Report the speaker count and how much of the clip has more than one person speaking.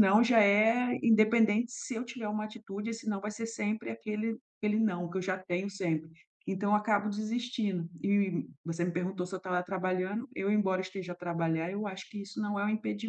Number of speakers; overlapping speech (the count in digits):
1, no overlap